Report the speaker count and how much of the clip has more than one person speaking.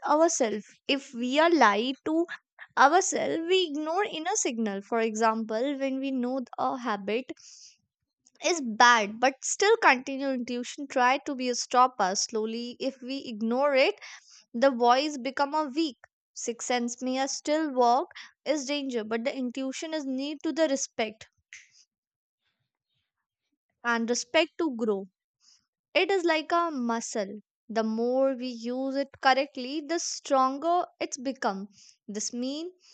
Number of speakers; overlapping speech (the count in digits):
1, no overlap